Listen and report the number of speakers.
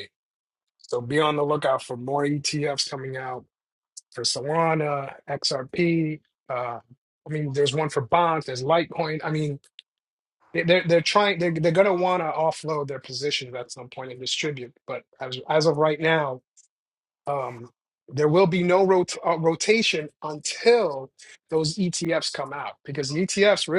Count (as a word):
one